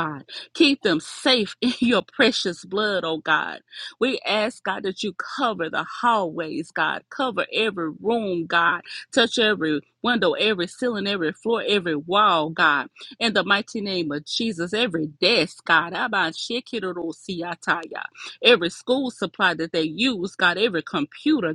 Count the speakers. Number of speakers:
one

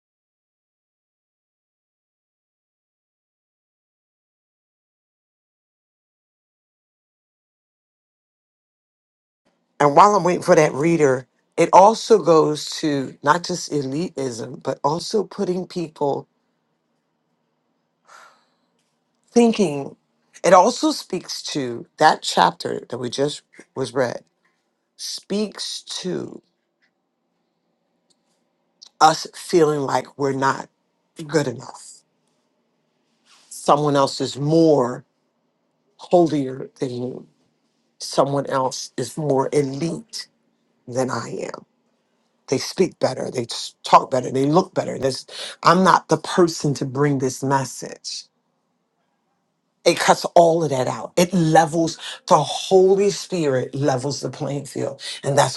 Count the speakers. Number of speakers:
one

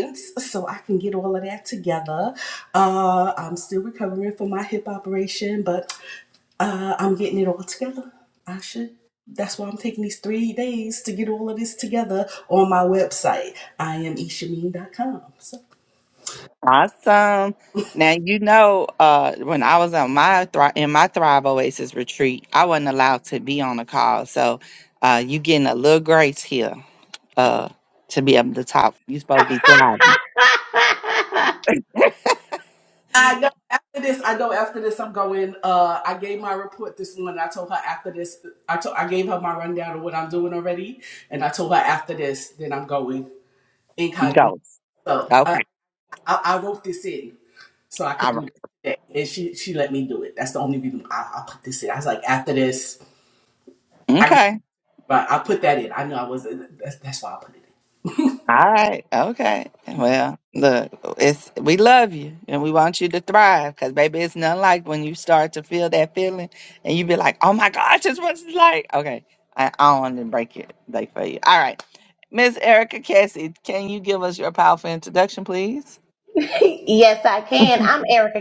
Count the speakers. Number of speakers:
three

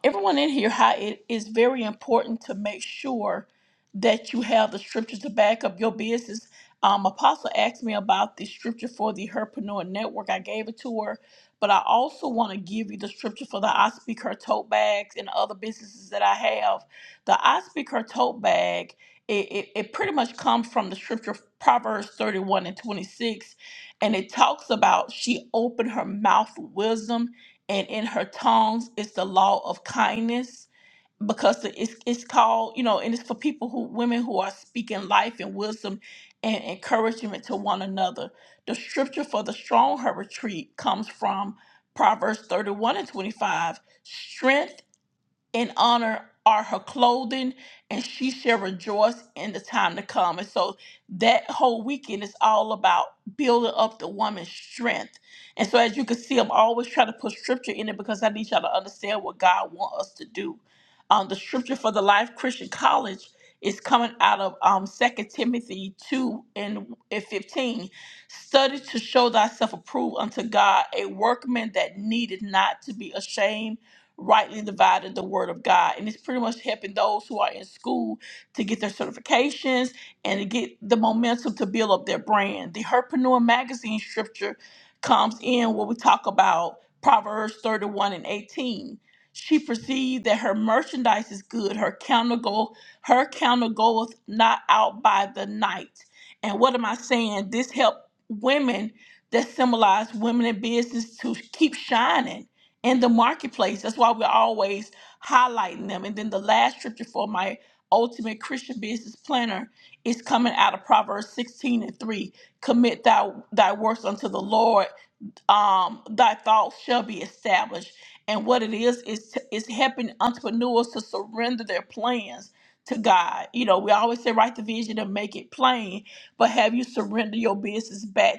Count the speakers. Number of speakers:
one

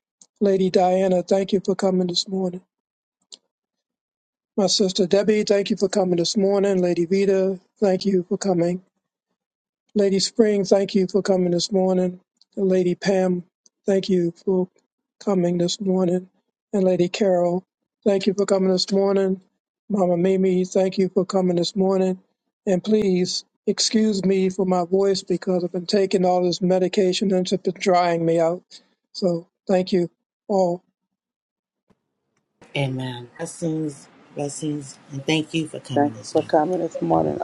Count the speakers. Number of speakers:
three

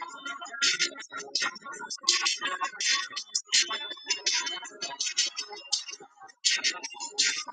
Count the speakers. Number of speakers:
zero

